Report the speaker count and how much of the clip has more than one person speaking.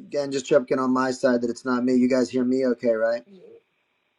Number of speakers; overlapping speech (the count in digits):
1, no overlap